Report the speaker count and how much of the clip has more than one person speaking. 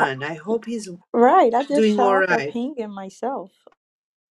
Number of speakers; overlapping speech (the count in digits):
2, about 20%